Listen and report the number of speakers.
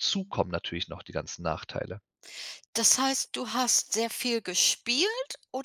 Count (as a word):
two